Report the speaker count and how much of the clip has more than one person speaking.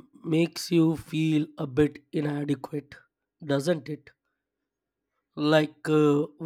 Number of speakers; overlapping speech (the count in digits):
1, no overlap